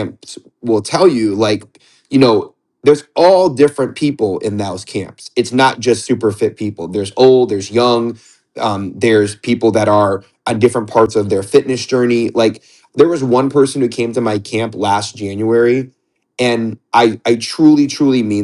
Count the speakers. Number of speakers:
1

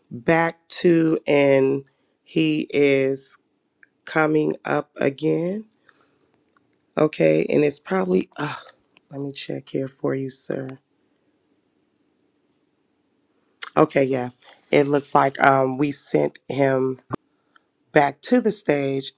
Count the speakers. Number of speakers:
1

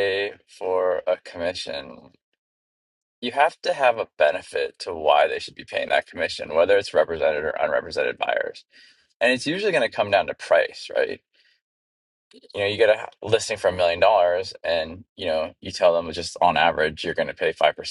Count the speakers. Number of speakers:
1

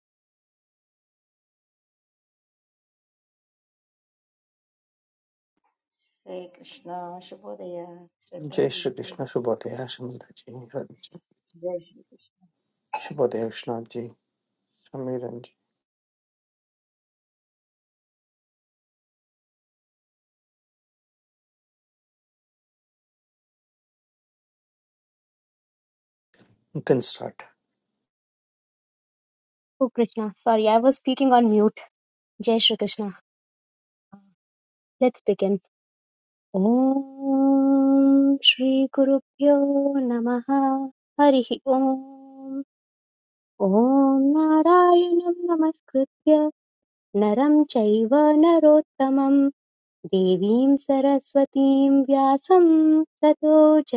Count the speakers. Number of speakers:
3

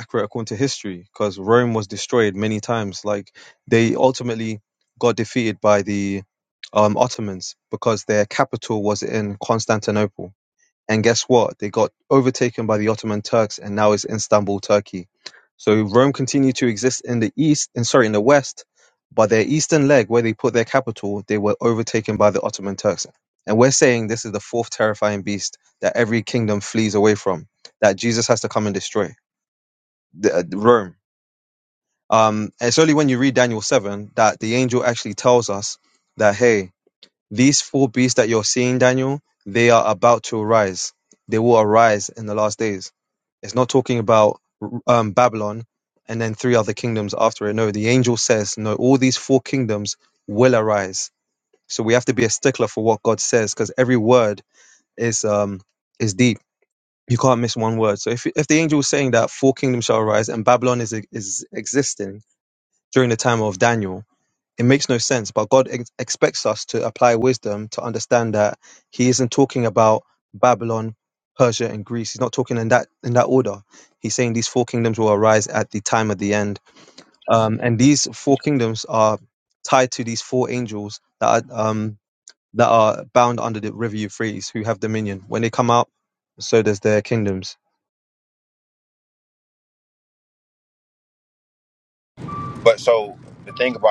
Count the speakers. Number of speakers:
2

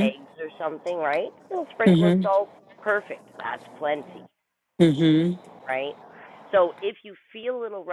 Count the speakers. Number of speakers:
2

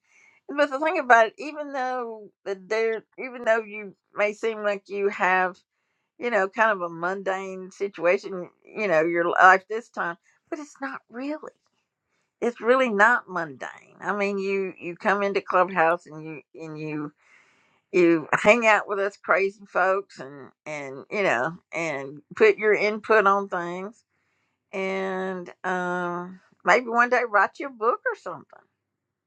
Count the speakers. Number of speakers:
1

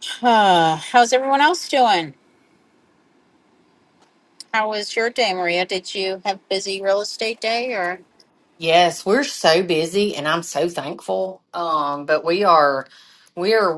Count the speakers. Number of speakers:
2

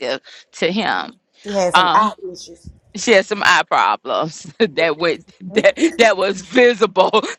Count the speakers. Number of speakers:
2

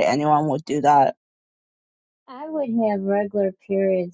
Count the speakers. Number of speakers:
2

